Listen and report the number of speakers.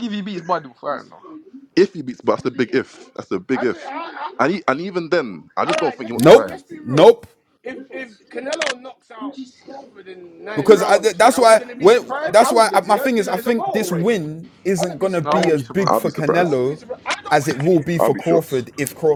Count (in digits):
4